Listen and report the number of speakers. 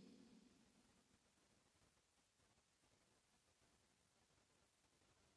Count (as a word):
zero